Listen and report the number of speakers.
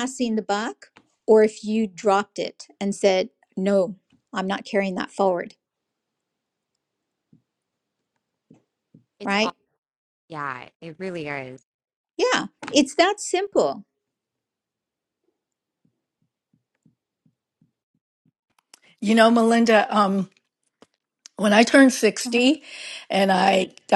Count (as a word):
three